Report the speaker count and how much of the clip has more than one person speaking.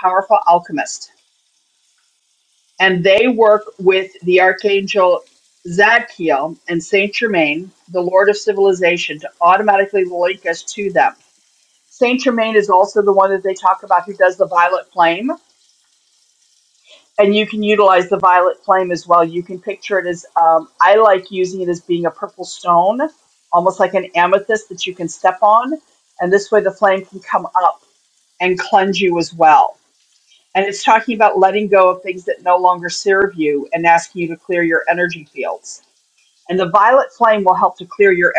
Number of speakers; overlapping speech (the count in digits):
1, no overlap